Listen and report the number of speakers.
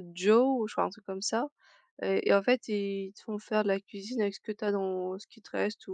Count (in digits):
1